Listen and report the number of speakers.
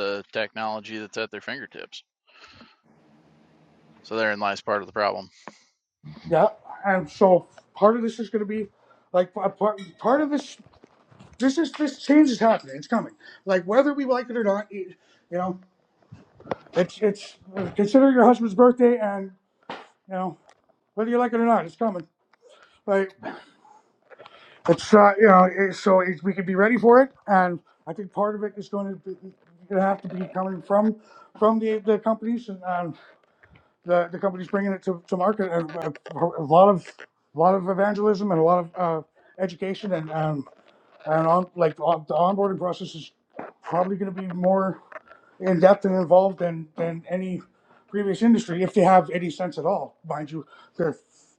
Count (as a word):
two